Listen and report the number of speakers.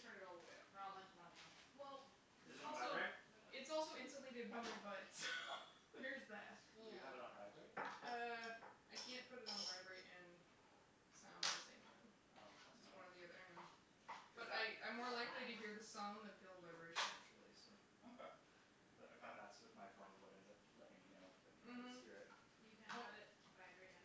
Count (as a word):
four